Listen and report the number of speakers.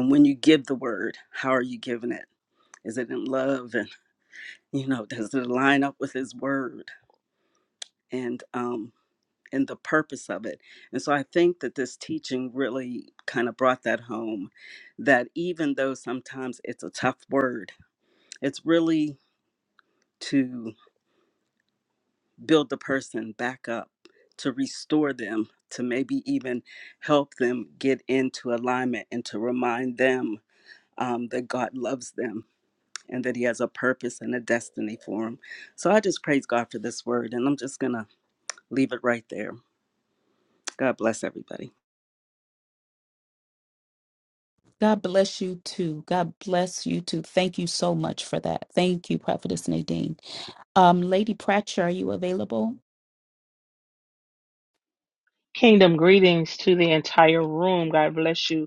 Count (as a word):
three